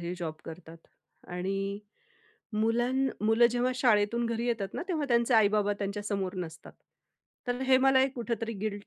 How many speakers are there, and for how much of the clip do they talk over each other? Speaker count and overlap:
1, no overlap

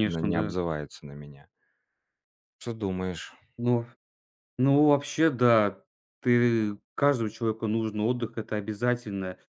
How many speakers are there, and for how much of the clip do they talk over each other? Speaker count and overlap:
2, about 6%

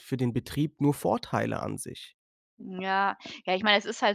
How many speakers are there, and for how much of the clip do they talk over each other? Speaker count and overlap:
2, no overlap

